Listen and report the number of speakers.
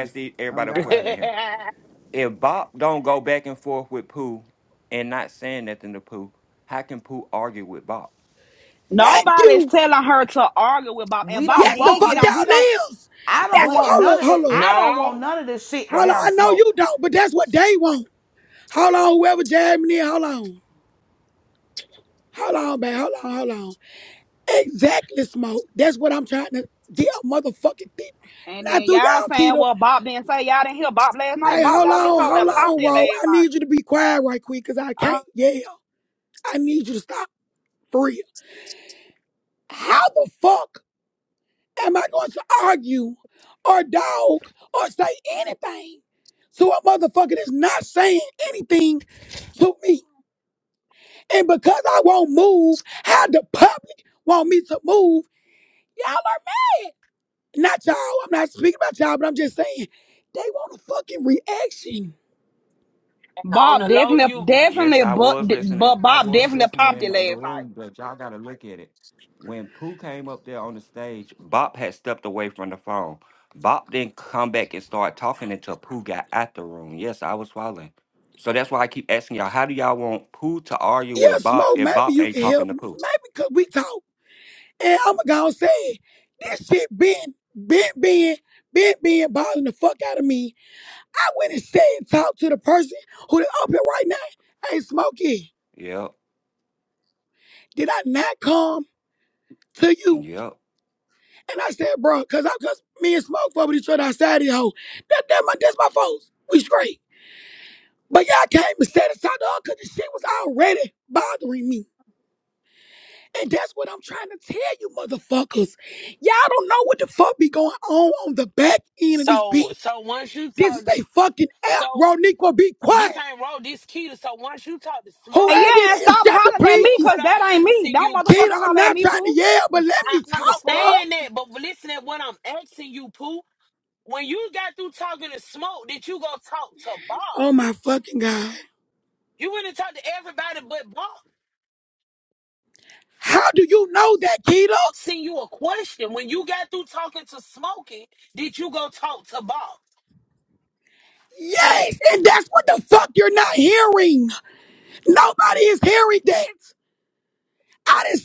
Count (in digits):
5